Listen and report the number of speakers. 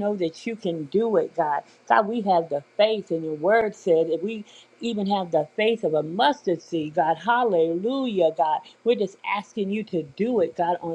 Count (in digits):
1